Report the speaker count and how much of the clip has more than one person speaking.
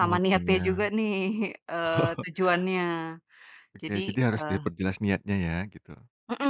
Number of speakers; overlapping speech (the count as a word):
two, about 25%